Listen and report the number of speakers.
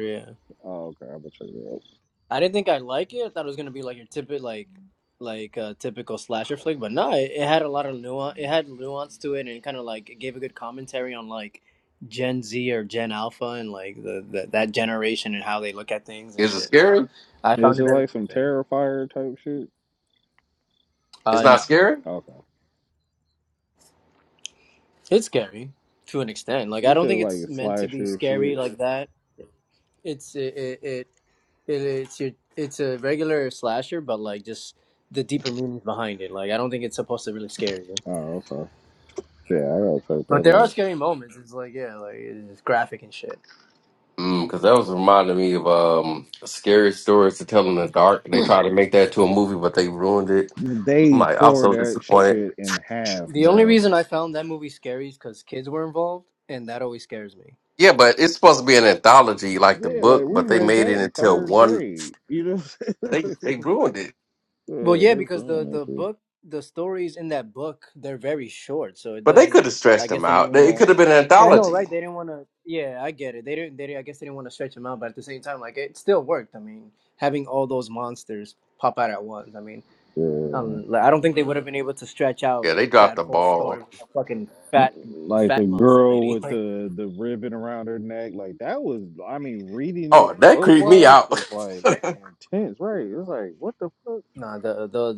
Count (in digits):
3